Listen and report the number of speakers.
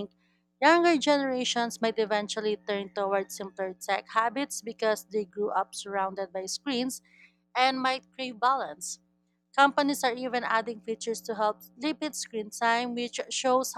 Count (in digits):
1